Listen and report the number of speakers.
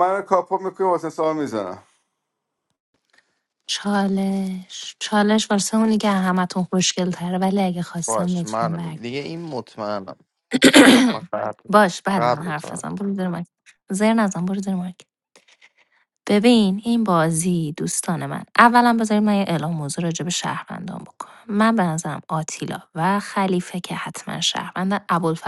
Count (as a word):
three